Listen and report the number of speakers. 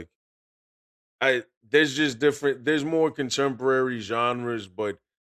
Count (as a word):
one